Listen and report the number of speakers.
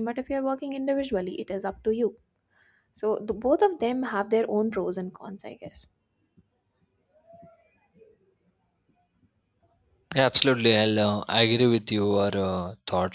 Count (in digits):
2